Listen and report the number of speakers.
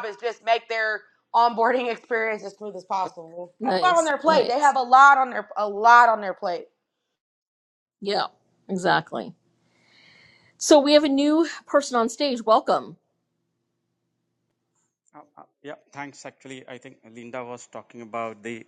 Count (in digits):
3